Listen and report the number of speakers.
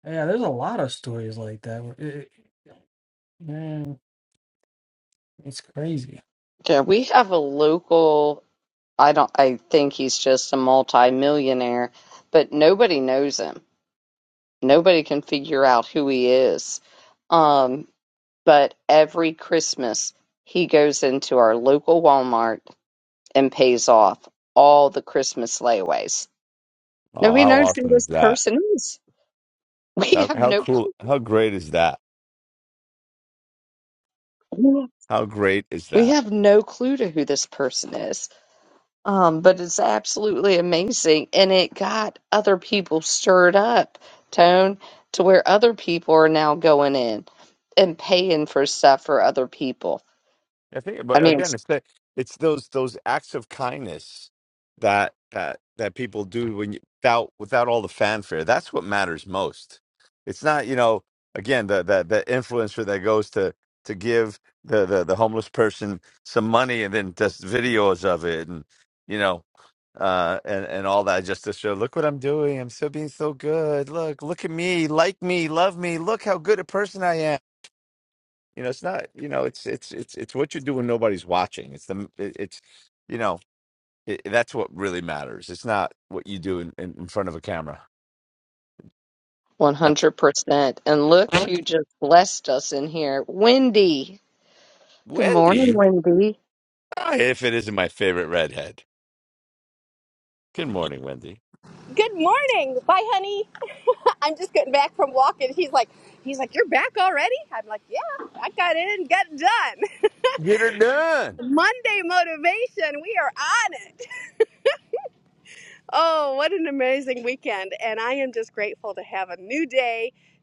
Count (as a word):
four